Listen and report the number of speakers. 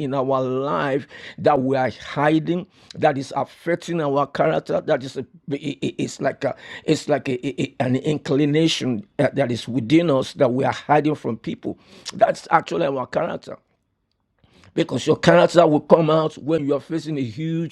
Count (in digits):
1